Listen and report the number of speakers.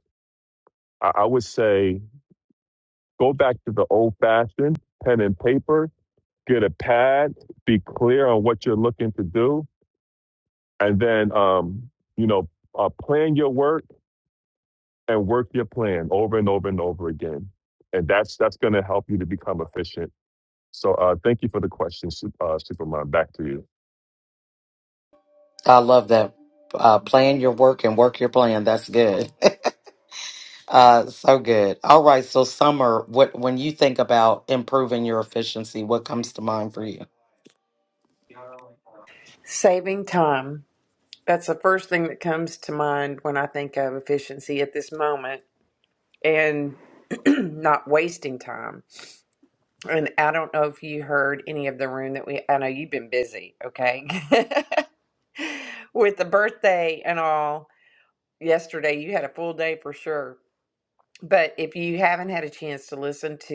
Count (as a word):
three